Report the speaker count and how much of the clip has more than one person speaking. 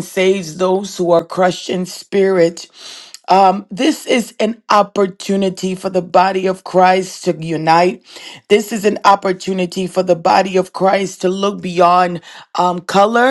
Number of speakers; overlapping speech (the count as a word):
one, no overlap